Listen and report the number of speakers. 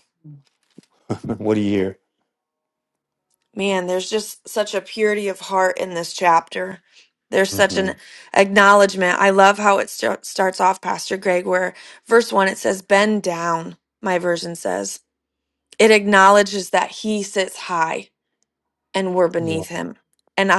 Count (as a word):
two